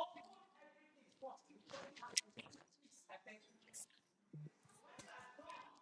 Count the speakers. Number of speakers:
zero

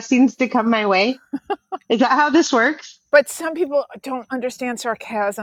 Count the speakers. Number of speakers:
two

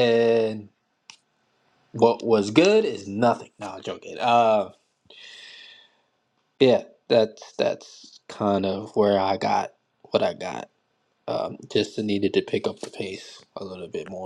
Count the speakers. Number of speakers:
one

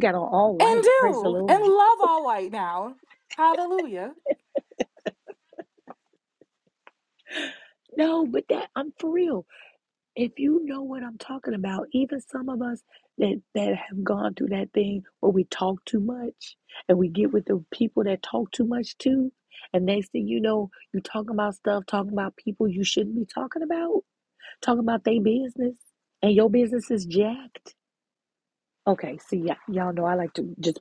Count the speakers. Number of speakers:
two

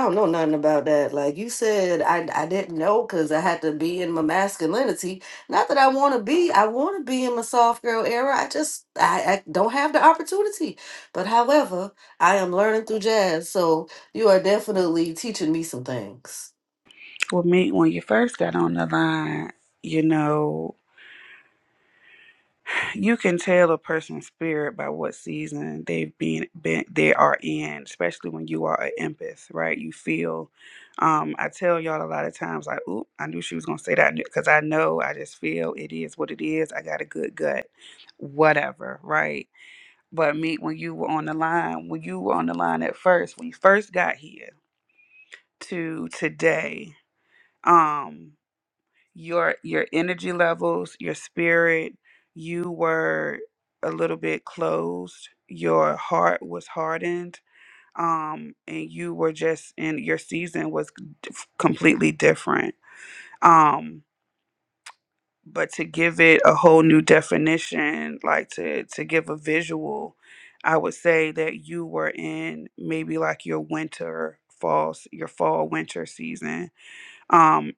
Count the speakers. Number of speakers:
two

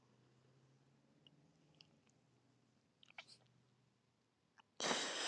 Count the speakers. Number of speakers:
zero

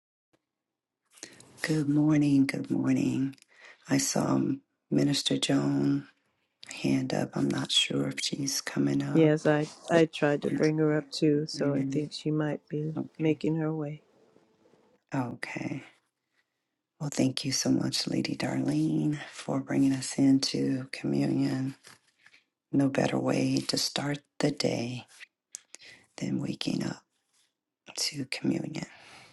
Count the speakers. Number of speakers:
two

